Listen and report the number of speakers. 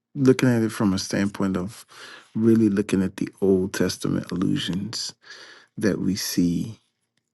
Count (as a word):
one